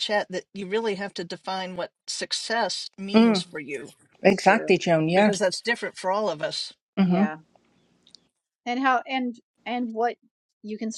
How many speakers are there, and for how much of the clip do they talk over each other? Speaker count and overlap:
3, about 9%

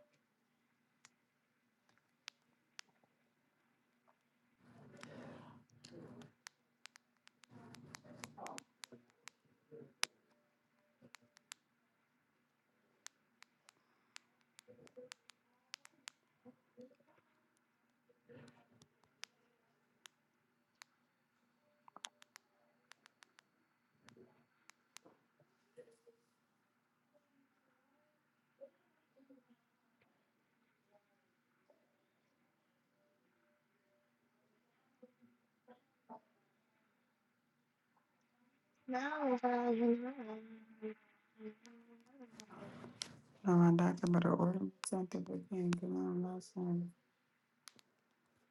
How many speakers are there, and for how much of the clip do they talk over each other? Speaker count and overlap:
2, no overlap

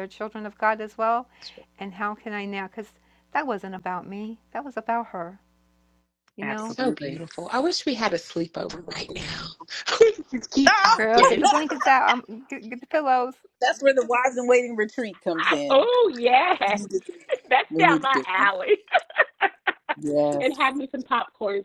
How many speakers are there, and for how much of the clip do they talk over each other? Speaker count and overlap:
3, about 13%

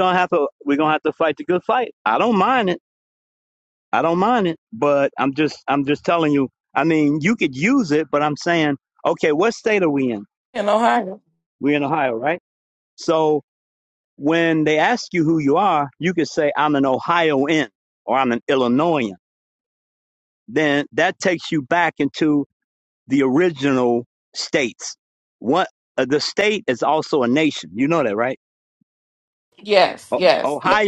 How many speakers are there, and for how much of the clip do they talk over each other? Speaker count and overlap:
2, about 2%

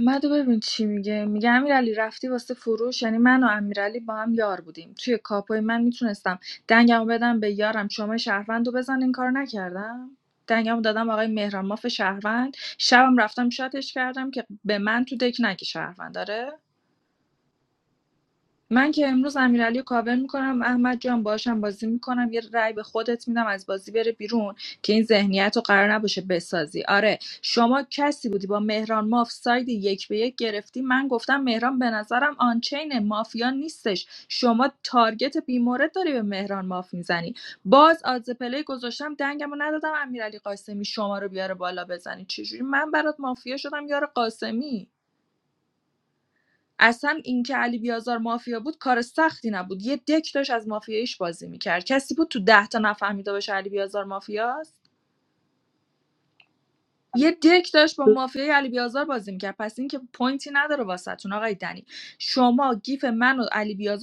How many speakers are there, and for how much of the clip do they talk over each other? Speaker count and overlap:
1, no overlap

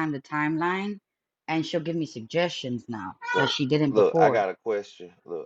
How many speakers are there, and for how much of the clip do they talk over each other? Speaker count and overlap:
2, about 14%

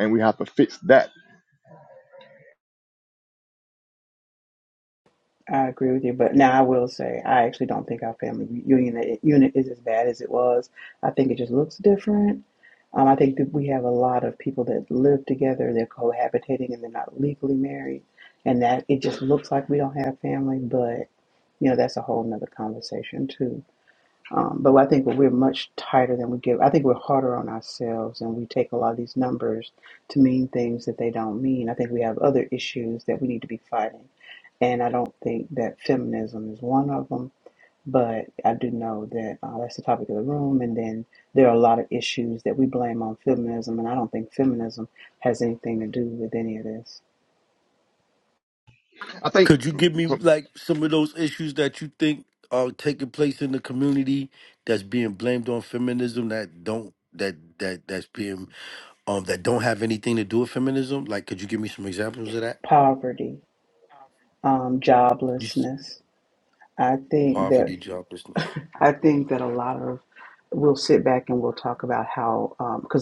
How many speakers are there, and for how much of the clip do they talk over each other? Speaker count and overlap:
3, about 1%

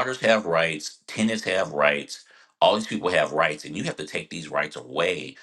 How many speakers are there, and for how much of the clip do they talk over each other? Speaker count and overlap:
1, no overlap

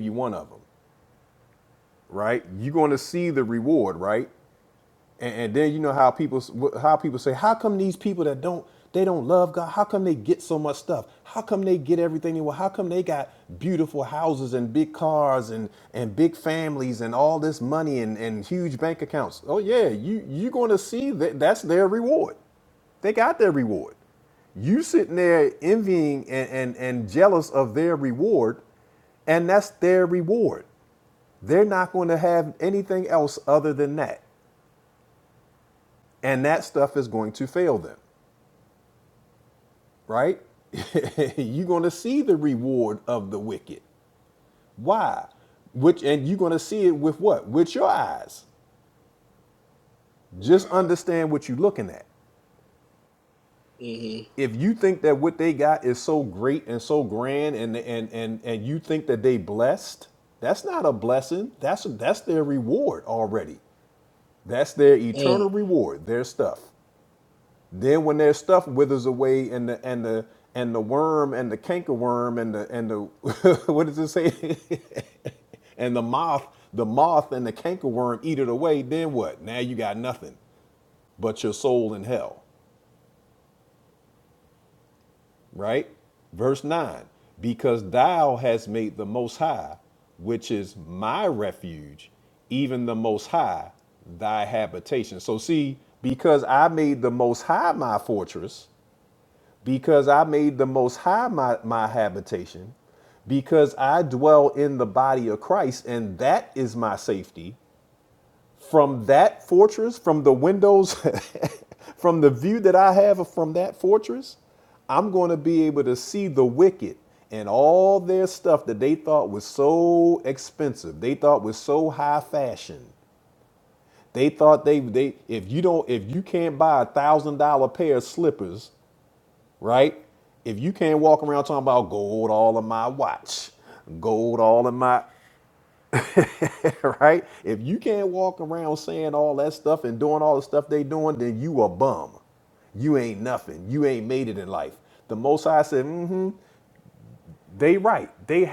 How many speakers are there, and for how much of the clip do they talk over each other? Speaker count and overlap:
2, about 1%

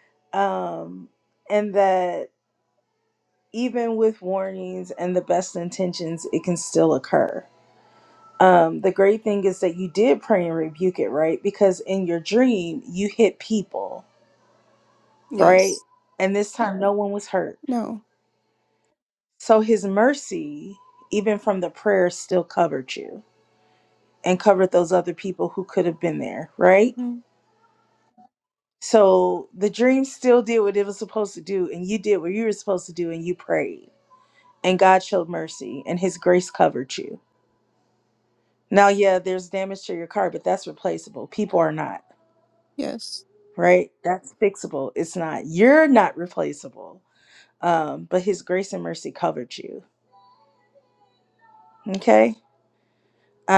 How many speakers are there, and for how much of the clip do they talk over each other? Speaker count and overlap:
2, about 1%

